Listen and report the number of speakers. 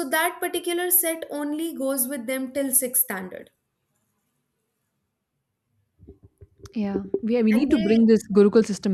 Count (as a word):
two